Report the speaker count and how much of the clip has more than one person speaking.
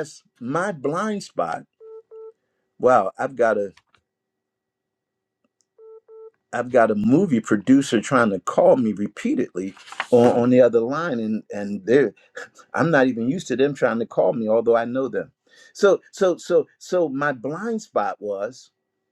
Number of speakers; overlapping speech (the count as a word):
one, no overlap